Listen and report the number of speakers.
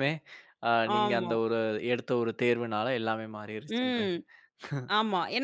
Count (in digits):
2